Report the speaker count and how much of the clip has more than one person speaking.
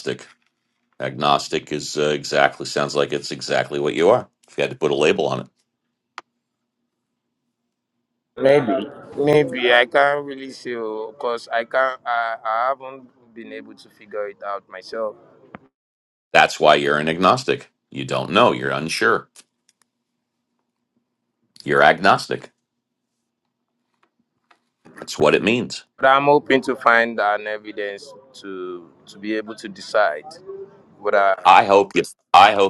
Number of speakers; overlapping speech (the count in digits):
2, under 1%